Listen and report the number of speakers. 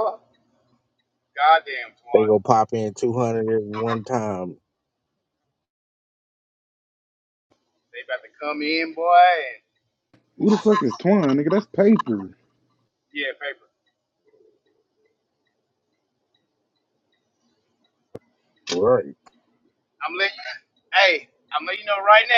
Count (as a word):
three